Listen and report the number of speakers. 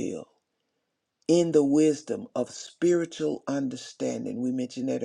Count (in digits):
1